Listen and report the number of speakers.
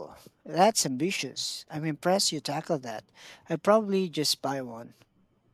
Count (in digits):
1